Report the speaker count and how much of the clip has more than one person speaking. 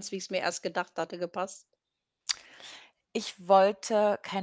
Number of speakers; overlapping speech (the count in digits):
2, no overlap